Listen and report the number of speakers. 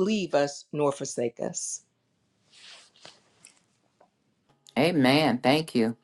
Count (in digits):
2